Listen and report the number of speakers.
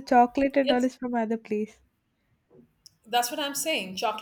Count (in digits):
2